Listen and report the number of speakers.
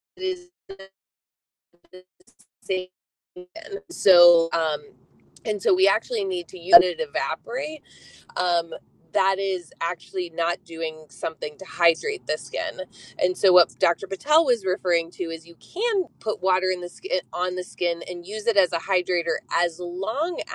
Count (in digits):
1